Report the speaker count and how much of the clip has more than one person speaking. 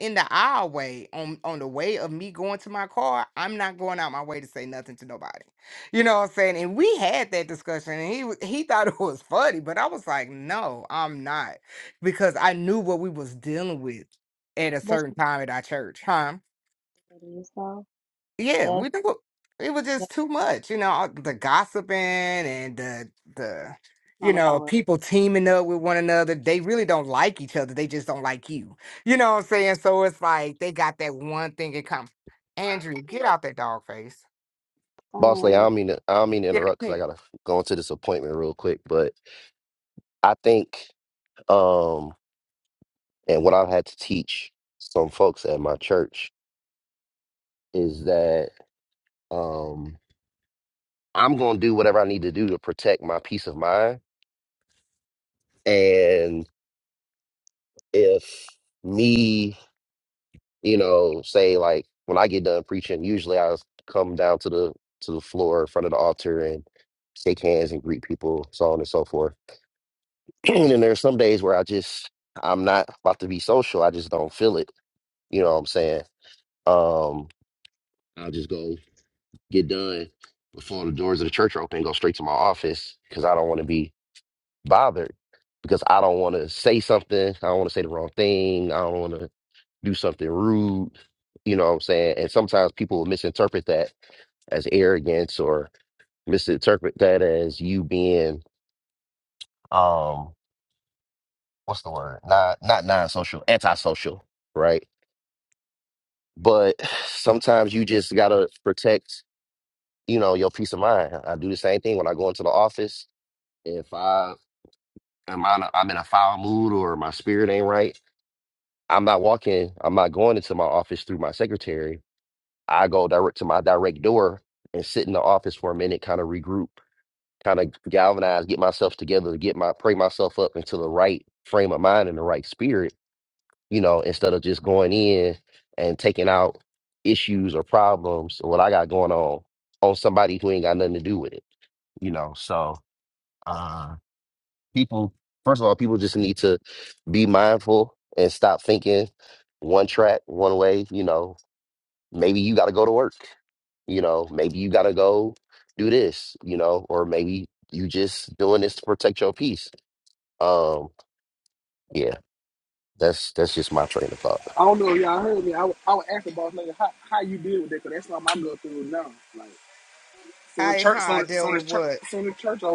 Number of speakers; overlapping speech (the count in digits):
4, about 2%